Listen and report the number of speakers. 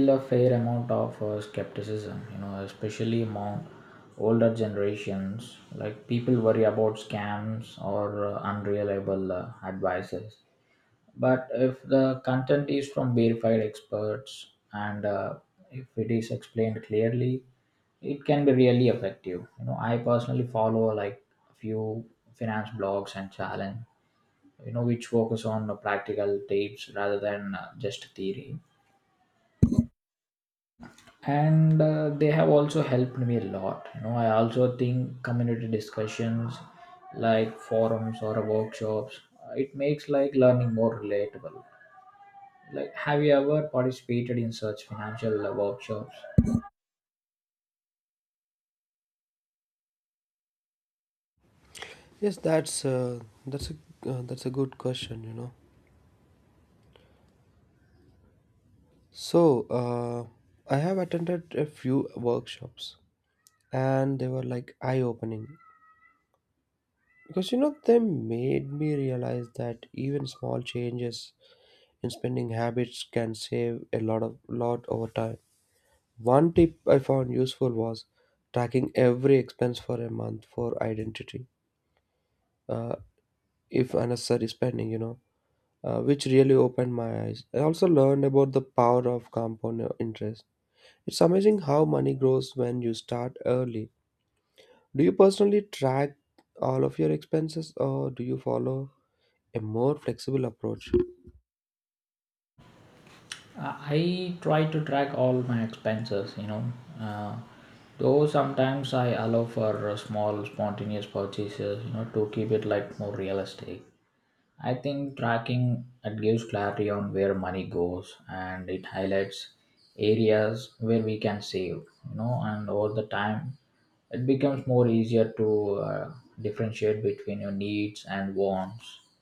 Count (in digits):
2